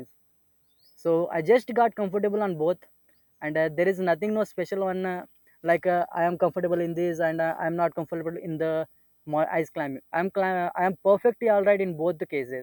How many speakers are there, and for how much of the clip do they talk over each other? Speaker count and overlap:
1, no overlap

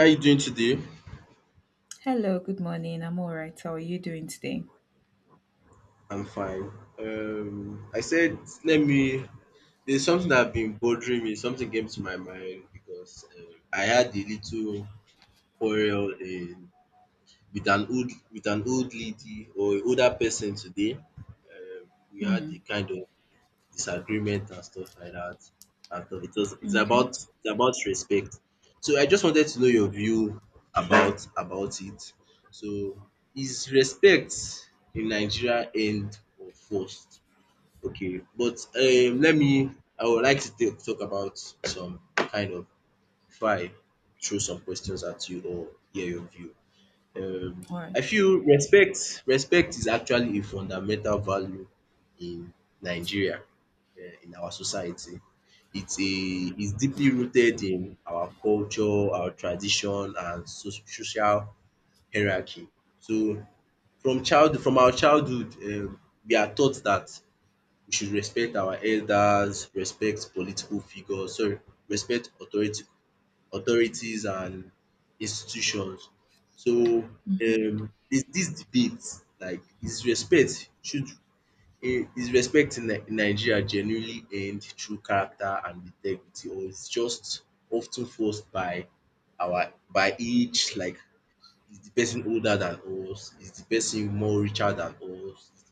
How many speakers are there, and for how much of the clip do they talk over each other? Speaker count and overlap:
2, about 1%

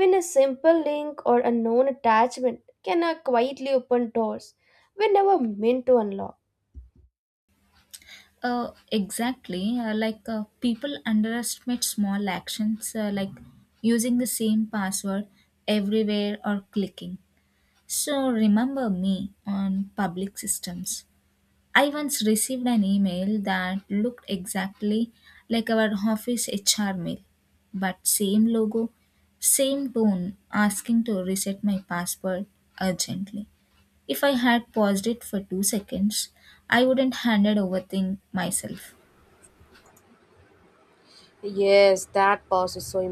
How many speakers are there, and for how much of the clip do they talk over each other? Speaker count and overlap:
3, no overlap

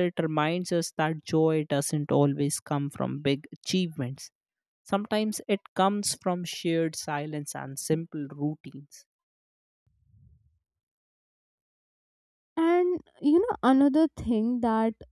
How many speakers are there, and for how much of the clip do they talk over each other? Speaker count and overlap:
2, no overlap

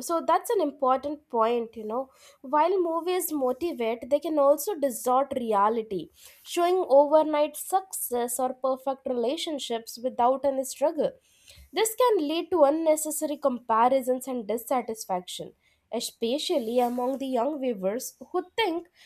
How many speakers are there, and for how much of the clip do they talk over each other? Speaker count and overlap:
1, no overlap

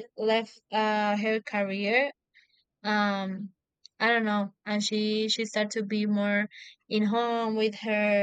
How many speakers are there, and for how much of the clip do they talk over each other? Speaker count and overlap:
1, no overlap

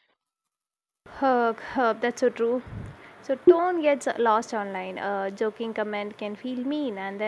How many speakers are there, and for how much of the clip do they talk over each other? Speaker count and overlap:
1, no overlap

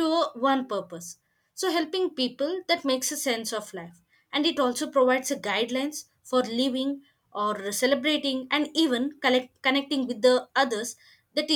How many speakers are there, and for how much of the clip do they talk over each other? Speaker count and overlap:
1, no overlap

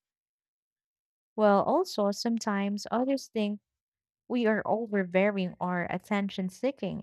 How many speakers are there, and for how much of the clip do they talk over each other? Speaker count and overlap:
1, no overlap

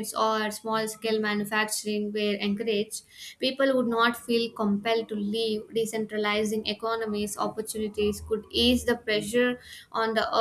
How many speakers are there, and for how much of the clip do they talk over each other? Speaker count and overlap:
1, no overlap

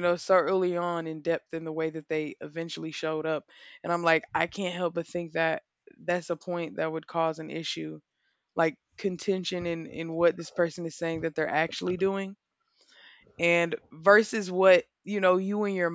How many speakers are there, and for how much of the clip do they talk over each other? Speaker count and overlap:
1, no overlap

